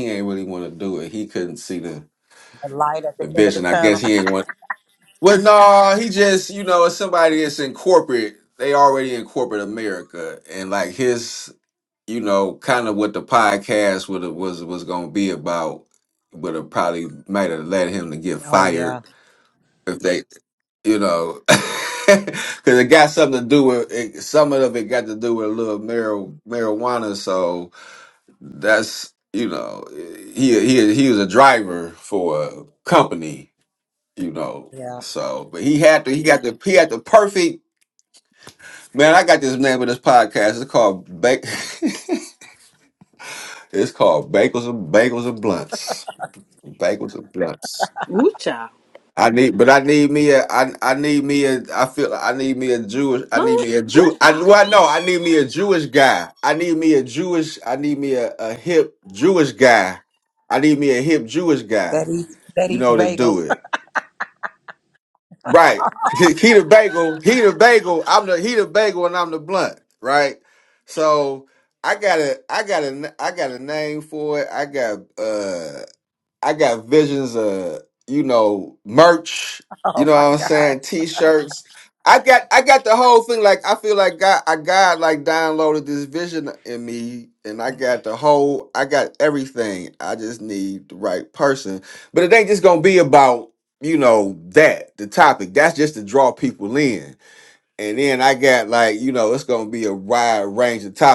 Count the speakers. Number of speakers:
3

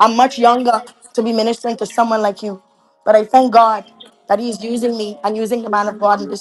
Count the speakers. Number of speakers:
1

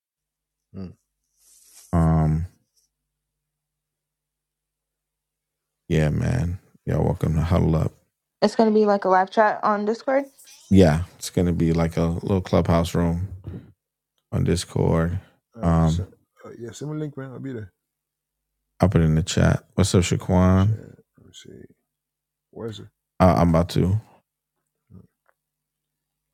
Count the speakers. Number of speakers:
3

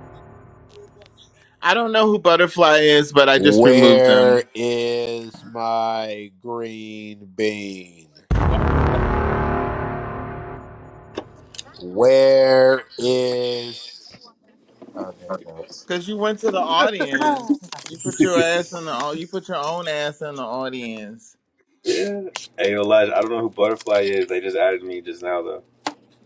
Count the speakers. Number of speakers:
3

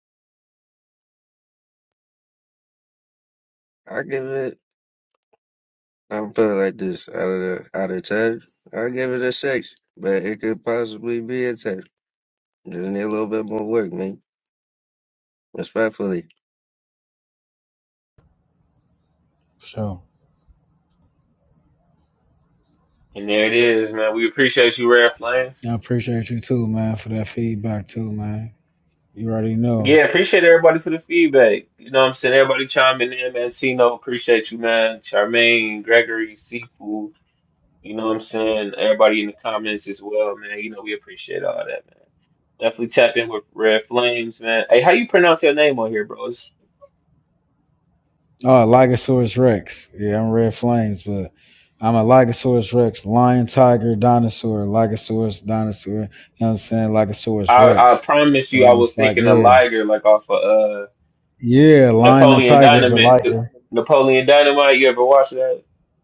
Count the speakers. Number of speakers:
3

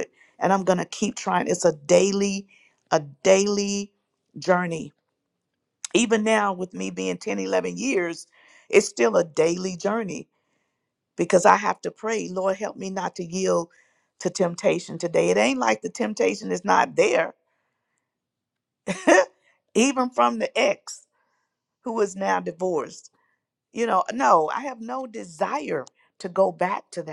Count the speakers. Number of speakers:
1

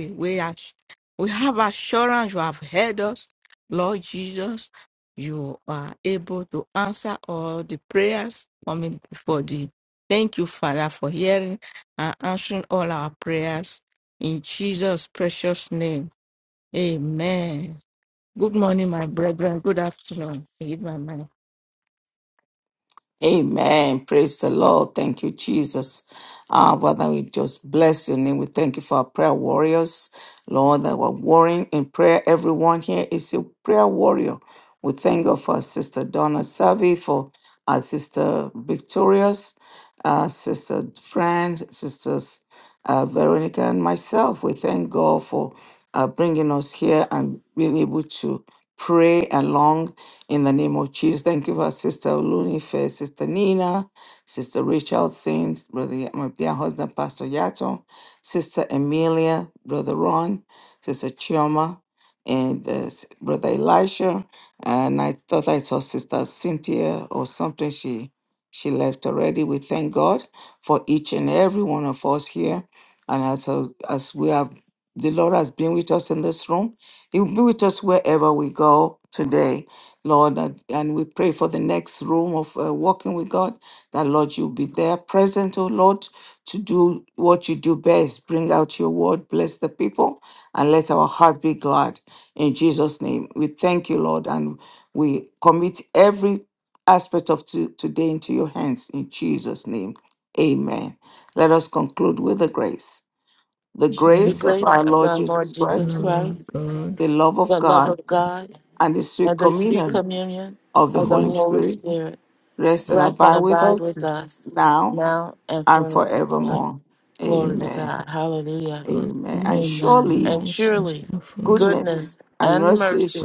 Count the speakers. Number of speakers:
3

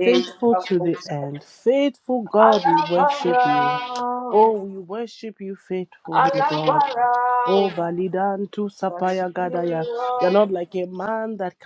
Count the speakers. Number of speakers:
2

